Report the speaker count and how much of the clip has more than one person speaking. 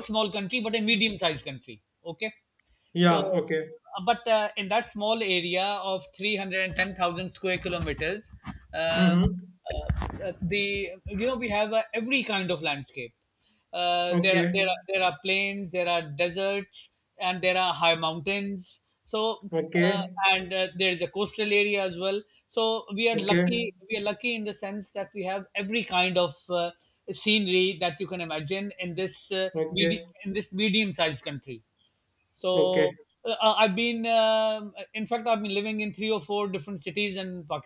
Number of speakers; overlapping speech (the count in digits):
2, about 7%